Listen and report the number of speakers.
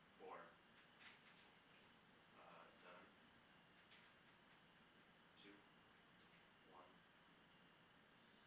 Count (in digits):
1